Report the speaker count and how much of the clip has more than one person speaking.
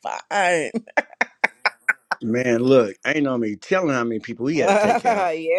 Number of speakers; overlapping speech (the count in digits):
2, about 13%